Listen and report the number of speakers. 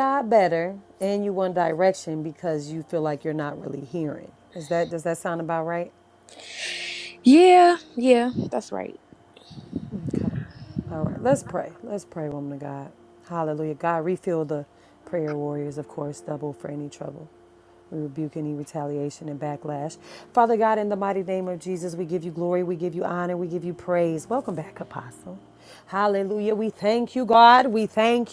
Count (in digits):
2